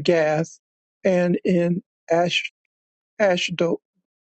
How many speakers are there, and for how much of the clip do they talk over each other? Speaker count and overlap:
1, no overlap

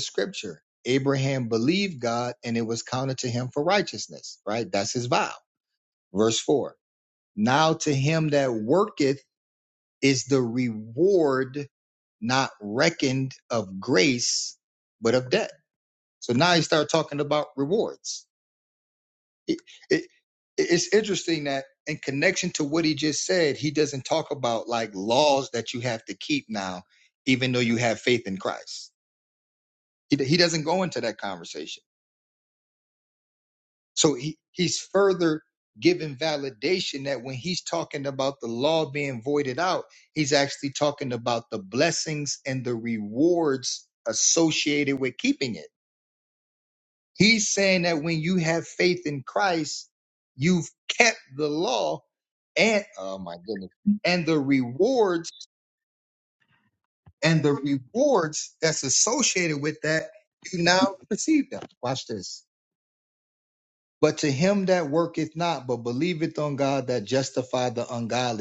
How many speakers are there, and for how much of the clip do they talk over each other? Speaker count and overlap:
1, no overlap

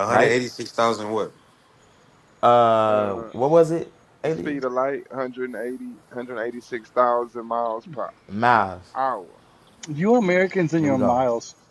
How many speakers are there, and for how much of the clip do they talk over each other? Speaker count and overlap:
4, about 13%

